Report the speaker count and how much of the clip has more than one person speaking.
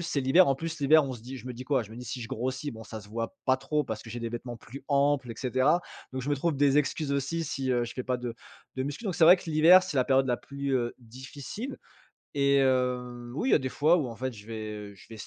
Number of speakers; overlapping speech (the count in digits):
1, no overlap